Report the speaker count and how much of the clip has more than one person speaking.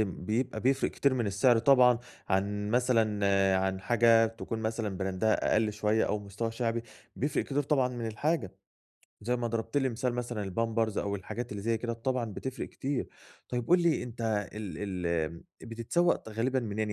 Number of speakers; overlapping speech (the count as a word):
one, no overlap